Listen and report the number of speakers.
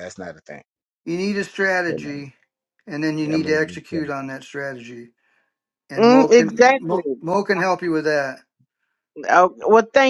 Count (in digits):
3